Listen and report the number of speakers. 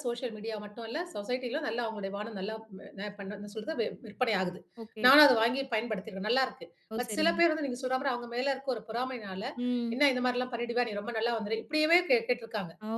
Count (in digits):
2